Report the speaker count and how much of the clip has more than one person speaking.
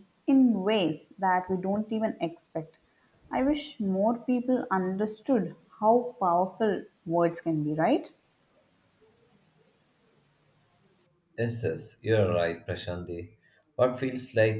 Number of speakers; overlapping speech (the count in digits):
2, no overlap